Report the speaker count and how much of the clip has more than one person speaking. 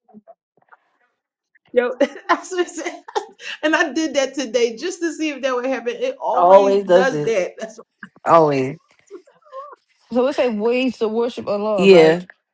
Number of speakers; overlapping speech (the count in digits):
3, about 11%